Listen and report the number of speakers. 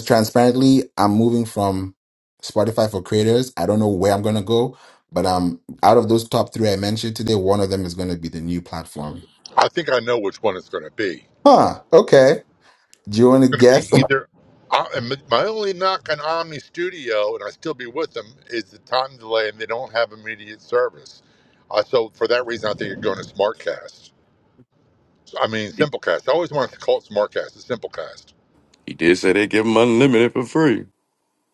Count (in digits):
3